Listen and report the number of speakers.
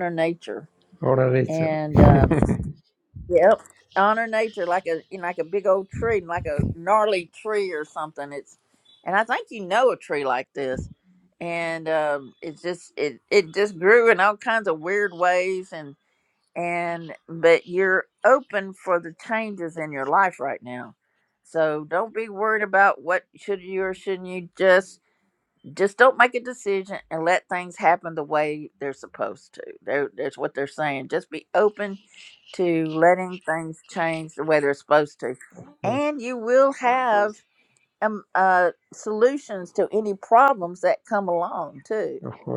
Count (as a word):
two